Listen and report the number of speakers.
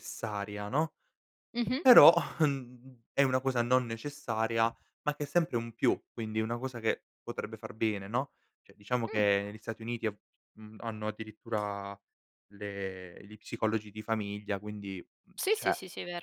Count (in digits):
2